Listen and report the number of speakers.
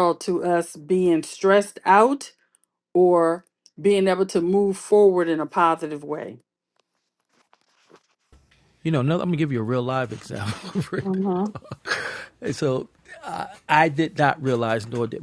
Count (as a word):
two